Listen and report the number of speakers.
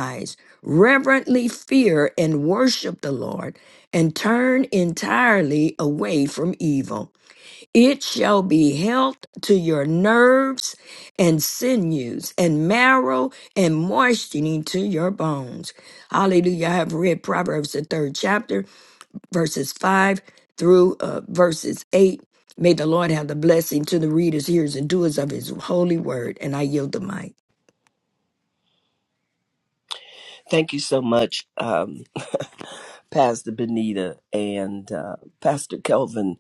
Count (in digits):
2